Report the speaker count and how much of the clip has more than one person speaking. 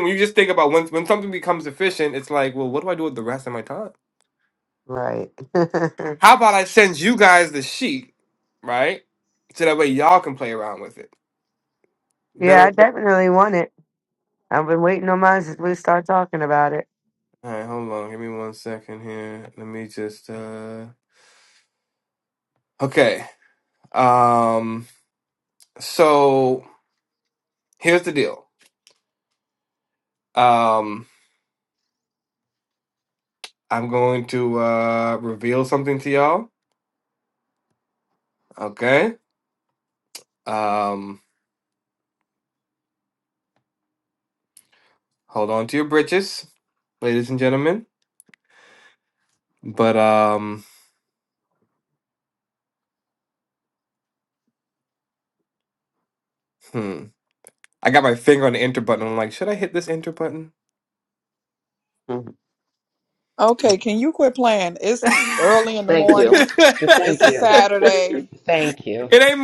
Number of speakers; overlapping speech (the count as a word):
four, about 3%